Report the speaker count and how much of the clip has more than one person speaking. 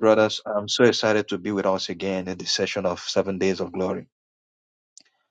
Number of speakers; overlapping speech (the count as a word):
one, no overlap